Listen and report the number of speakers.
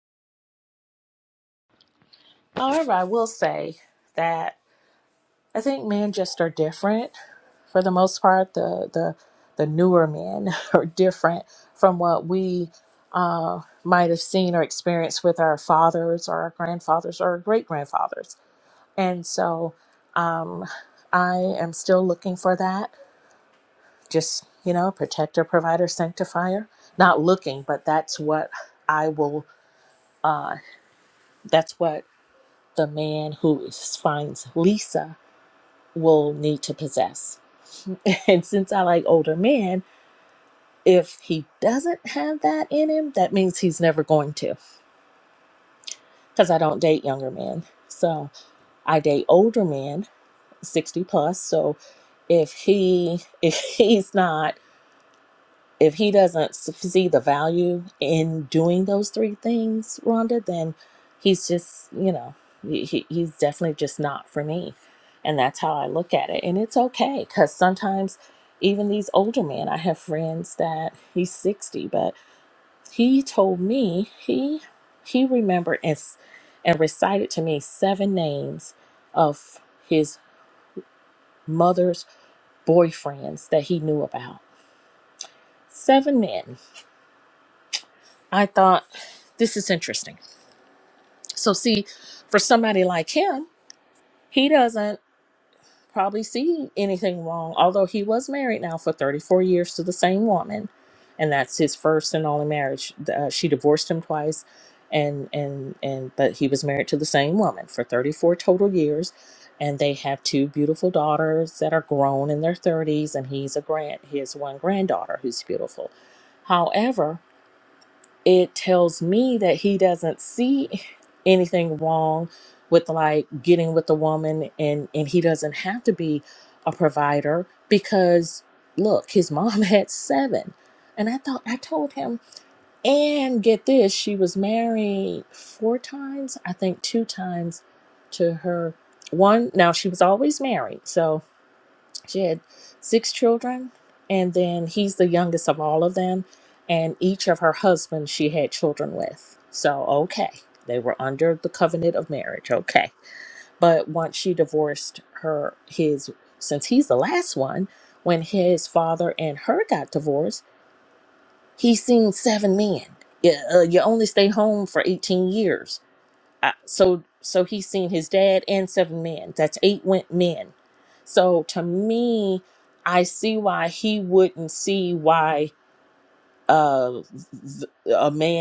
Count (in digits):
1